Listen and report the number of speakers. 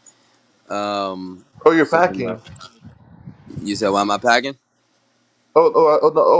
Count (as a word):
two